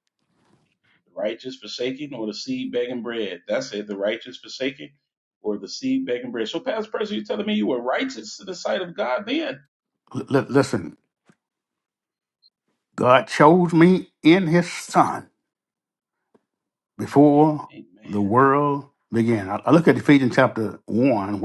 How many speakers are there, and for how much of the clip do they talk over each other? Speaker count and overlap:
2, under 1%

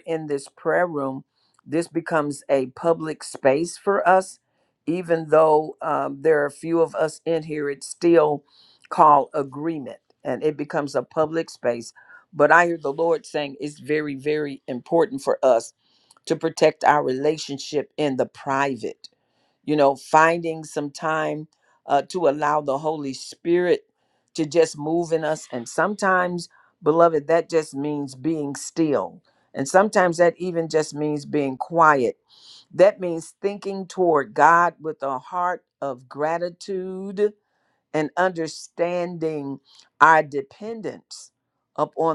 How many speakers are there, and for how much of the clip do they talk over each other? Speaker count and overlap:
1, no overlap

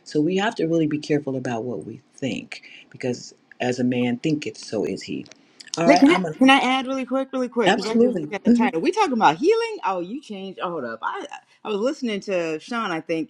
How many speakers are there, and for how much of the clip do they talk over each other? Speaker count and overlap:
2, about 12%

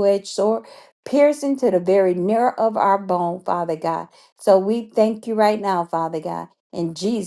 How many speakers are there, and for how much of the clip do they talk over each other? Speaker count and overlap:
1, no overlap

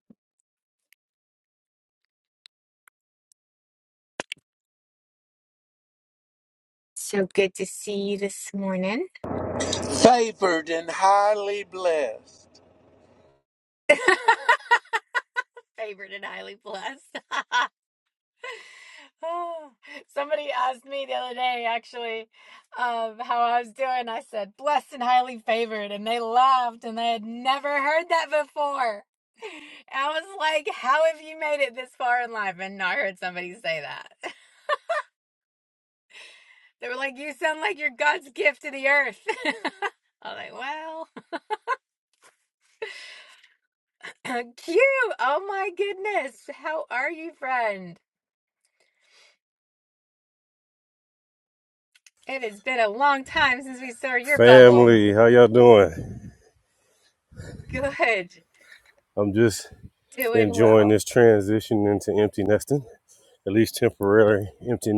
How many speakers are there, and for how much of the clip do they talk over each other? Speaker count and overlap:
3, about 2%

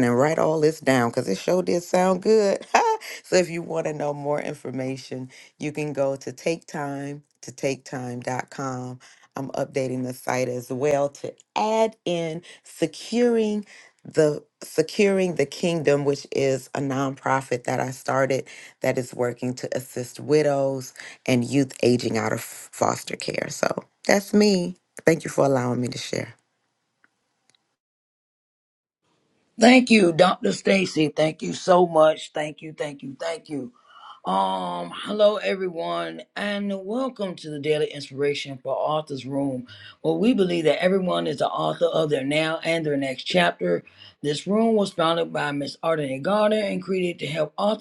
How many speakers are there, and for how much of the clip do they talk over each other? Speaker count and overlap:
2, no overlap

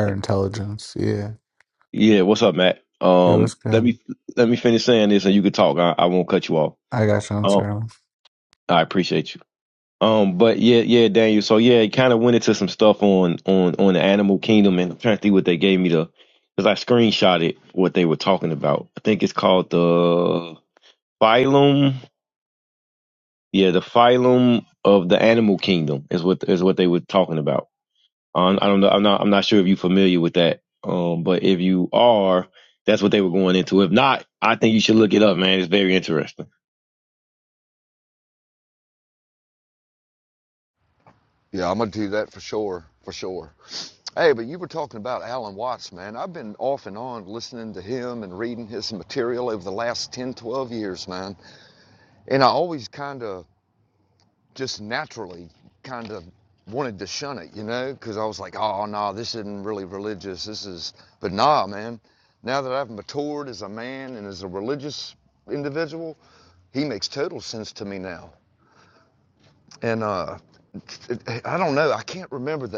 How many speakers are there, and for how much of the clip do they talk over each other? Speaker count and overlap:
3, about 1%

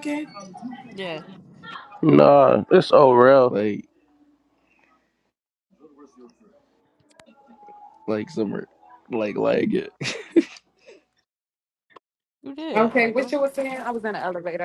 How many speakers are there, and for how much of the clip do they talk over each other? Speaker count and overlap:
4, about 5%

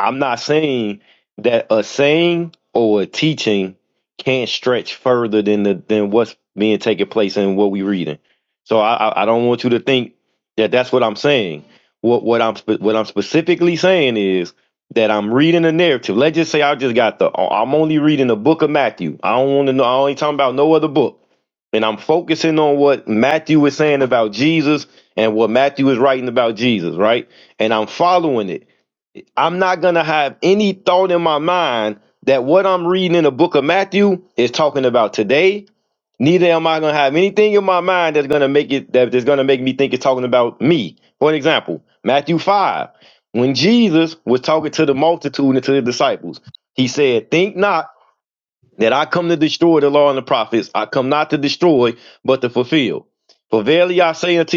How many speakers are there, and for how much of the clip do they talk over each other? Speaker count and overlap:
1, no overlap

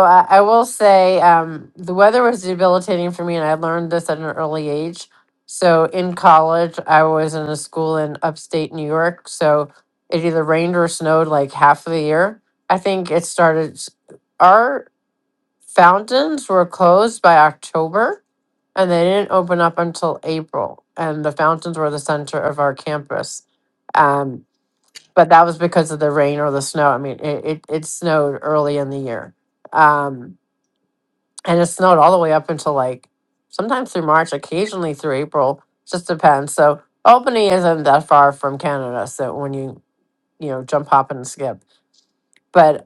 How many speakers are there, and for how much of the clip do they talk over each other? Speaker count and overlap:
1, no overlap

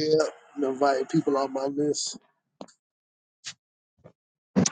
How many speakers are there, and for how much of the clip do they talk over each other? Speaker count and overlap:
1, no overlap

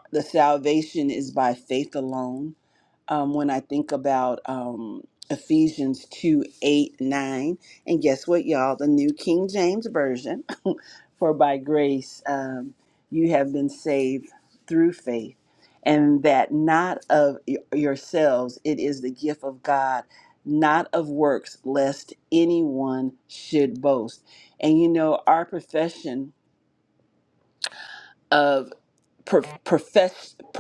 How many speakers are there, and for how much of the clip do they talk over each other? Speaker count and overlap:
1, no overlap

